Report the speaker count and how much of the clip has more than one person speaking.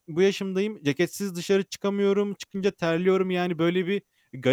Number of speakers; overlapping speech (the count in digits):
1, no overlap